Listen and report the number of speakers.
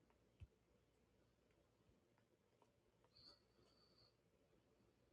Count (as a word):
zero